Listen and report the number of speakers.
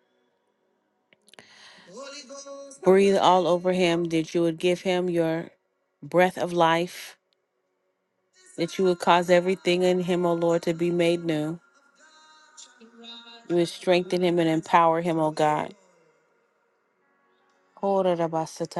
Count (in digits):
1